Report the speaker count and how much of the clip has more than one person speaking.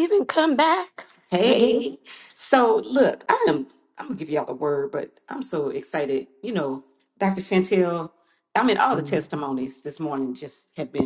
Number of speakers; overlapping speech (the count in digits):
2, about 6%